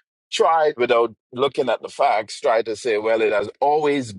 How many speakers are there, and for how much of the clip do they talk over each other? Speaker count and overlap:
1, no overlap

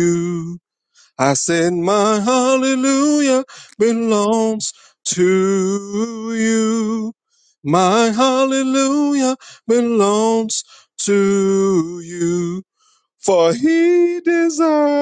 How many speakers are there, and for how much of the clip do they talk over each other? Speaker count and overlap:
1, no overlap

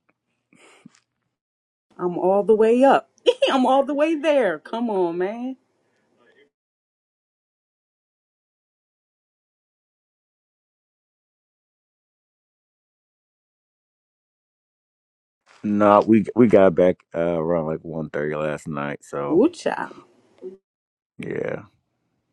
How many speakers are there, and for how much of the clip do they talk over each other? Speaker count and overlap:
2, about 1%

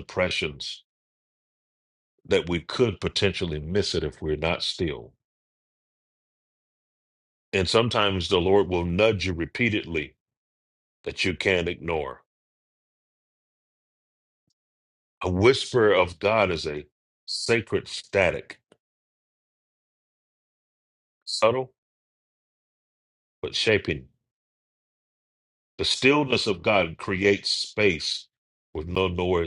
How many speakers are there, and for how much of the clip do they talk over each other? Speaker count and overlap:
1, no overlap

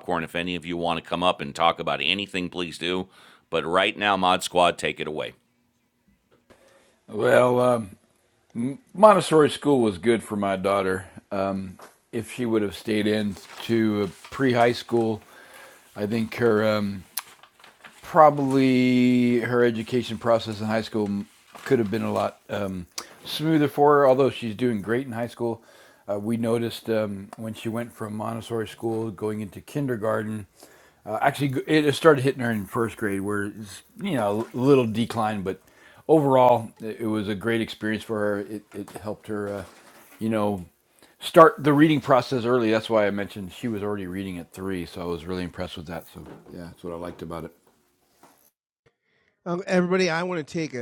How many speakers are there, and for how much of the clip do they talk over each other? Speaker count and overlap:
3, no overlap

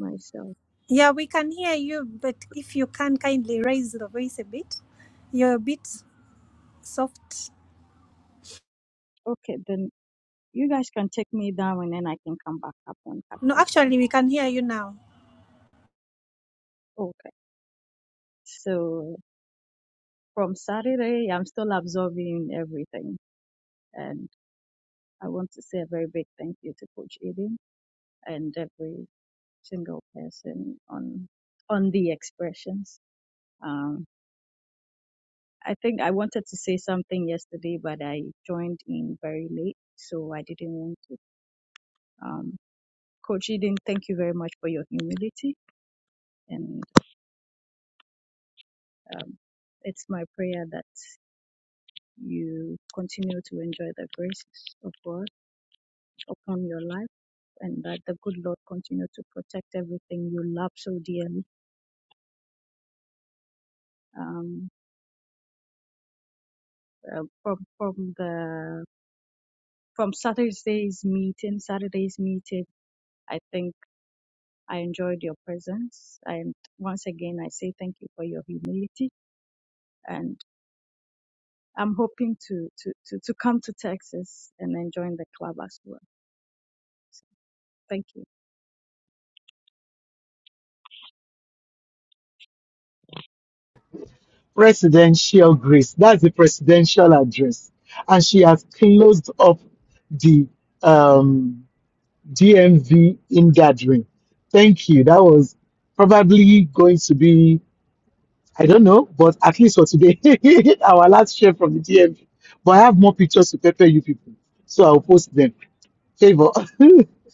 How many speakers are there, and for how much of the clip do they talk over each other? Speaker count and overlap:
3, under 1%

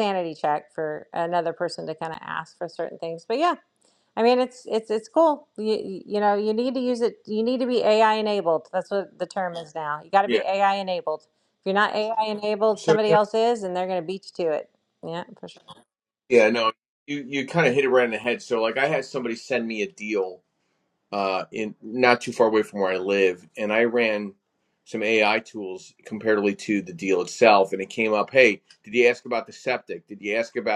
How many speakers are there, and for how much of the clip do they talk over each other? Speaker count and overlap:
2, about 2%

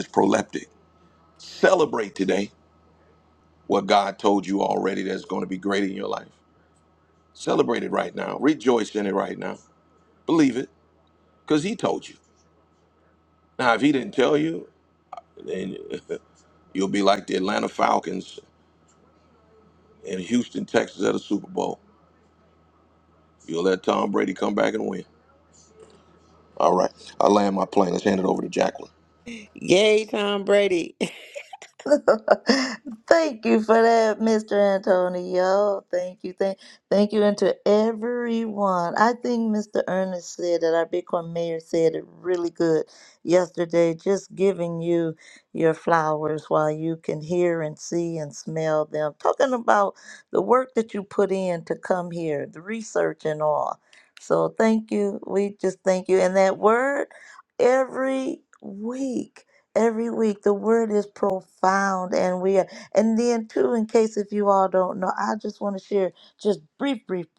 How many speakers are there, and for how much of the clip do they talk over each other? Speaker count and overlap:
3, no overlap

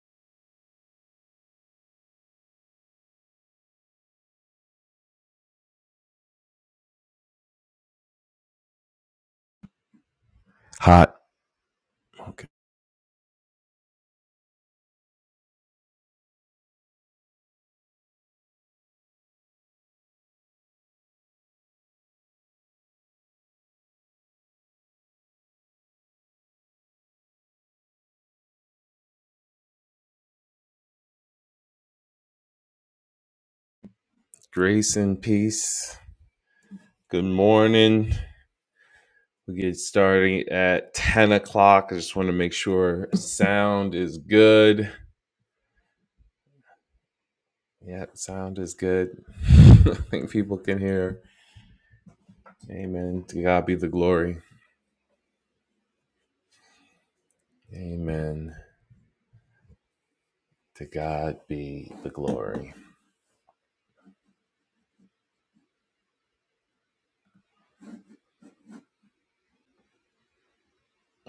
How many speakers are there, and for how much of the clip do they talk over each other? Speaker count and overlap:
1, no overlap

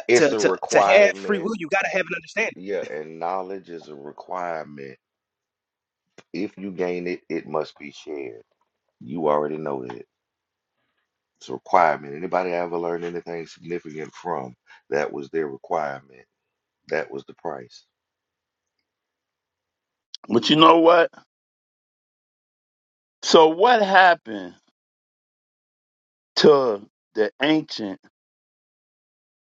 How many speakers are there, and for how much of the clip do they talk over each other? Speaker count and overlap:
3, about 5%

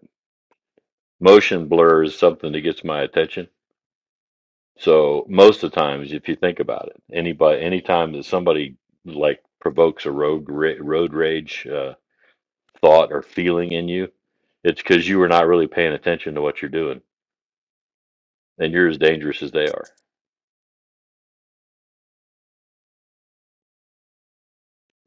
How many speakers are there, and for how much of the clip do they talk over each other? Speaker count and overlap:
1, no overlap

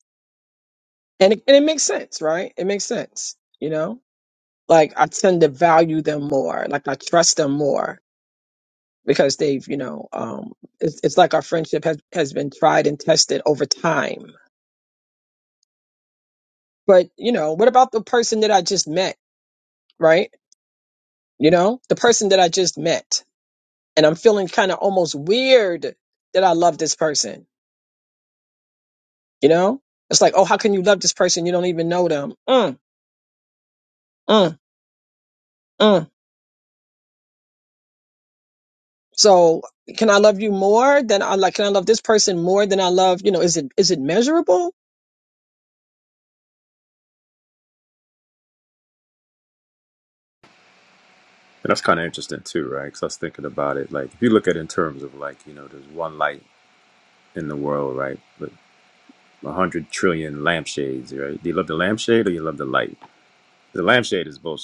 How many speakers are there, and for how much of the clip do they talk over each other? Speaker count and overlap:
2, no overlap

